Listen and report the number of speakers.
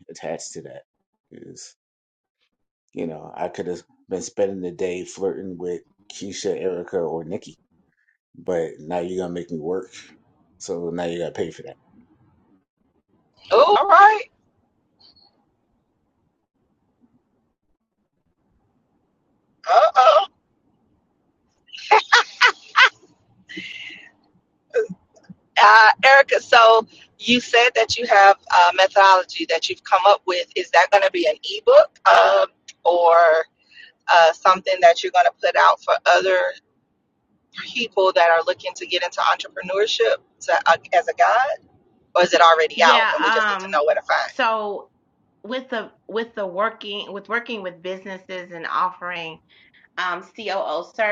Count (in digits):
3